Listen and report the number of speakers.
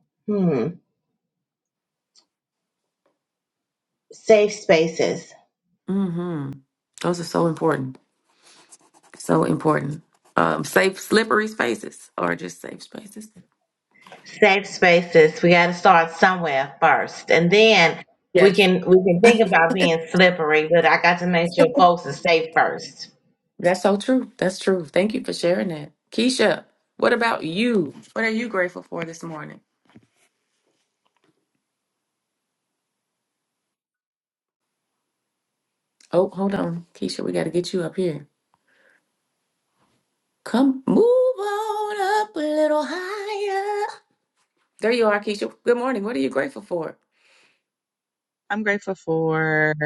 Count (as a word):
three